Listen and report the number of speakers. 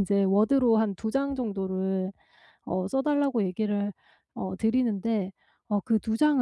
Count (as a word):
one